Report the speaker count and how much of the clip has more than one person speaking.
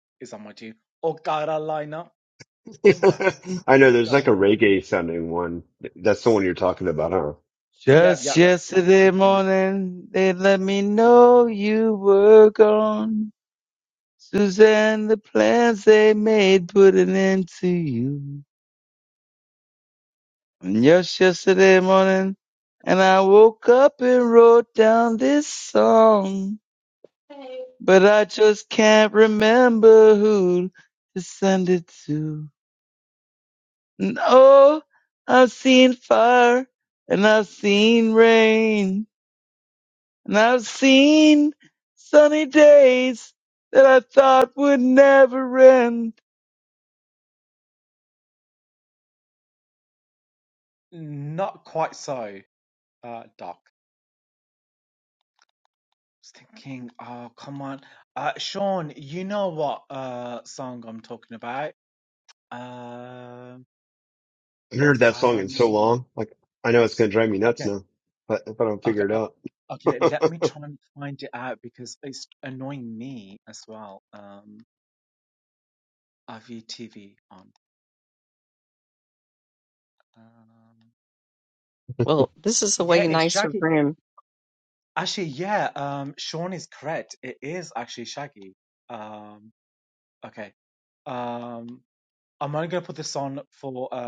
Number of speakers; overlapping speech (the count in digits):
4, about 5%